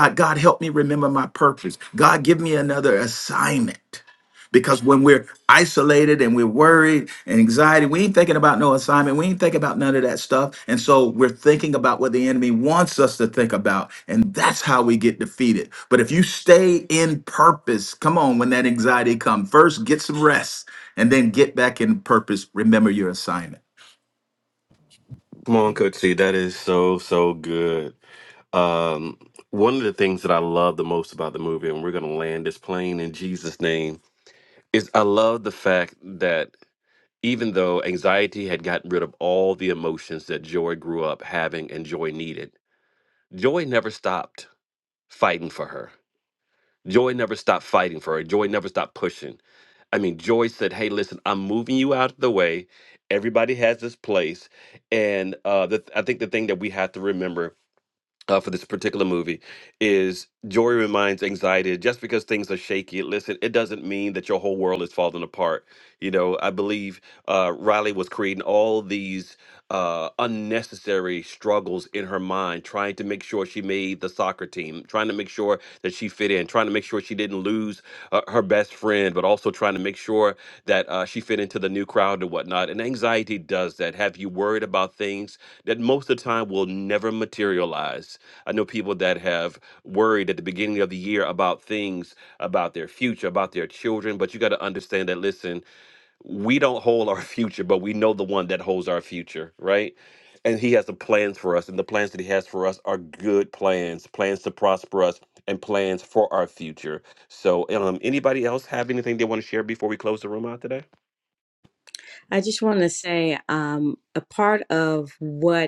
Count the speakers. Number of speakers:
three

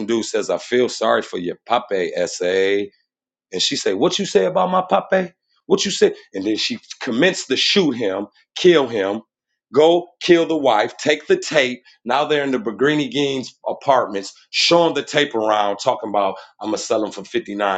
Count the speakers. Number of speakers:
one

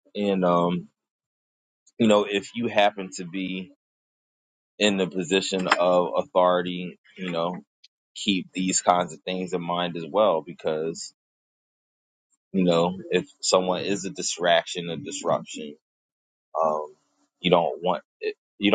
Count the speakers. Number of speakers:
one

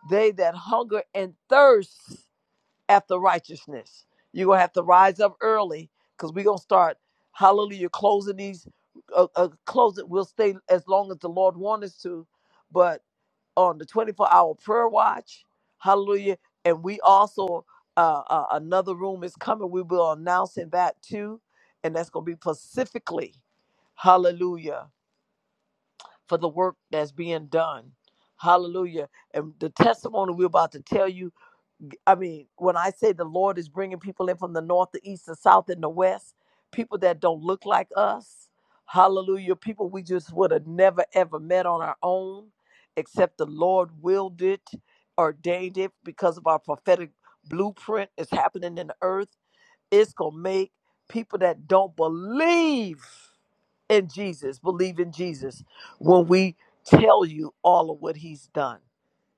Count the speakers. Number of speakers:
one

